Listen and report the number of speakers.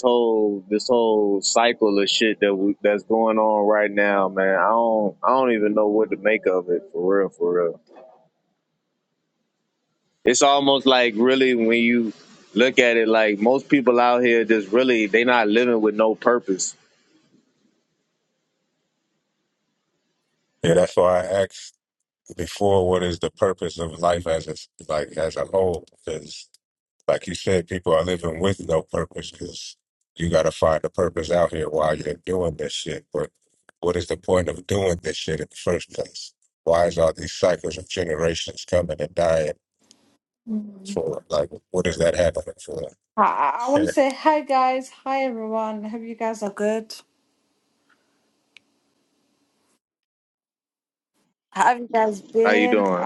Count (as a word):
three